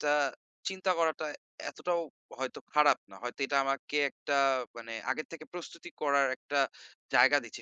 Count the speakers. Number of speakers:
1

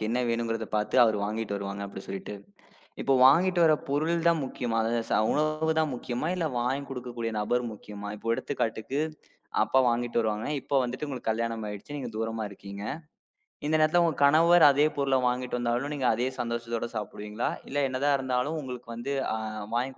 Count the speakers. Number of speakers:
1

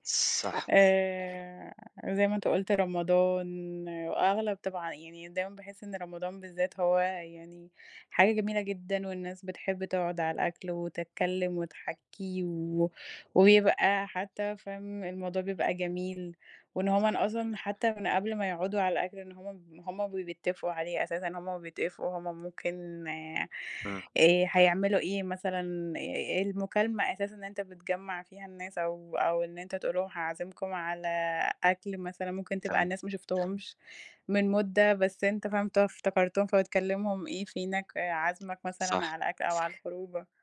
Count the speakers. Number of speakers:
2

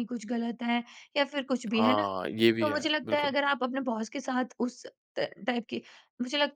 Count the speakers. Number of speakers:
2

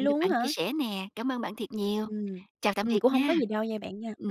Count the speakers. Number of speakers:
2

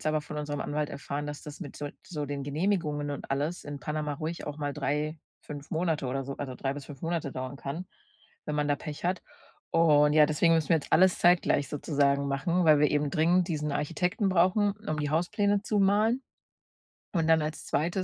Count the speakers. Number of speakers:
1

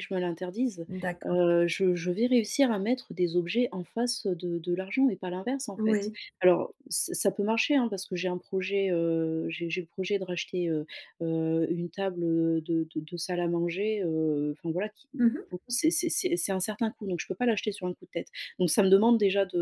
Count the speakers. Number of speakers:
2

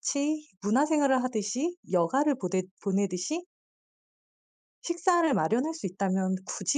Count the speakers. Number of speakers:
1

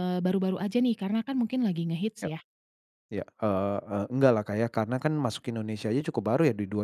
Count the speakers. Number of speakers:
2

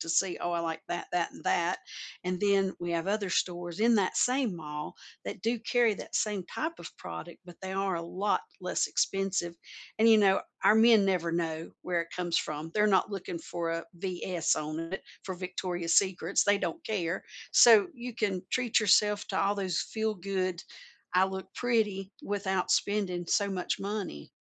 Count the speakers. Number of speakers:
1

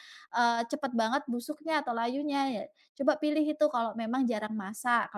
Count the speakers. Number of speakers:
1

